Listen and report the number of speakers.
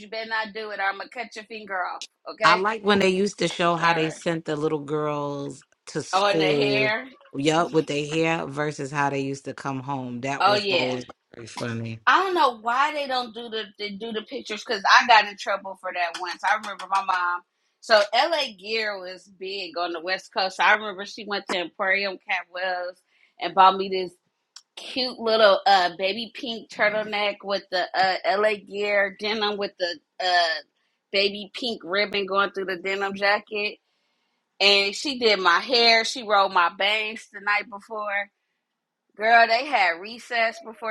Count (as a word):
two